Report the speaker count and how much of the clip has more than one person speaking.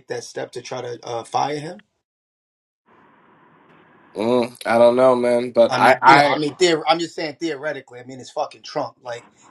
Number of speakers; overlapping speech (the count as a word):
two, about 7%